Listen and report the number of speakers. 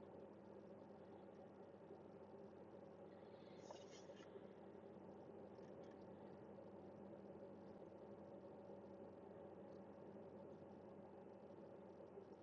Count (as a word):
zero